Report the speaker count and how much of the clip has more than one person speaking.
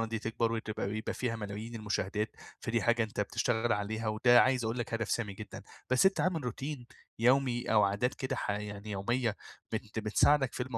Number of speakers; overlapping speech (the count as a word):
one, no overlap